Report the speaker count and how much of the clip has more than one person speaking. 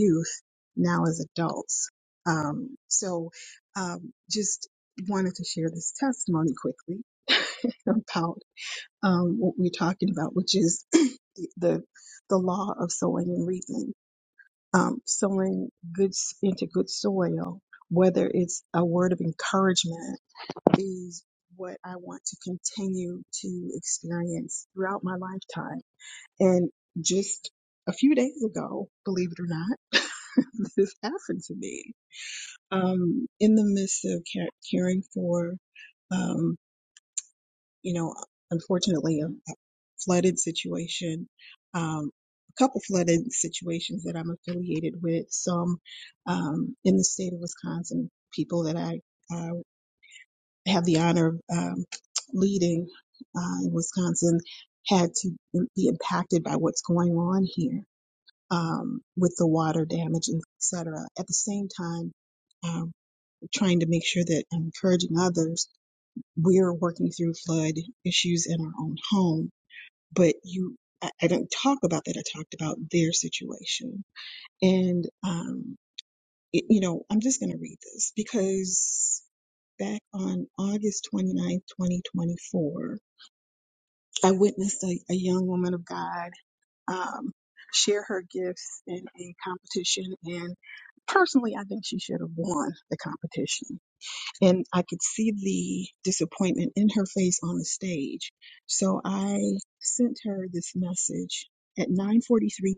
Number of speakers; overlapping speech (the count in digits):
1, no overlap